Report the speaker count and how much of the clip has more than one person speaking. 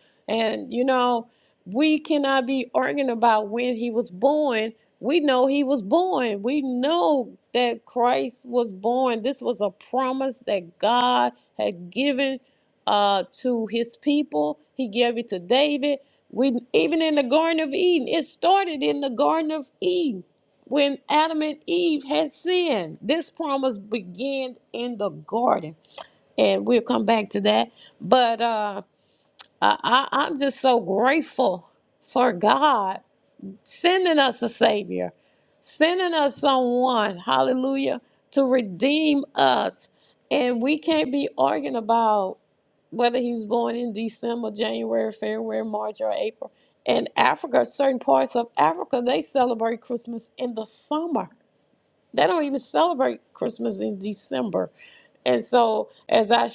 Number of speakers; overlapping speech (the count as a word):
one, no overlap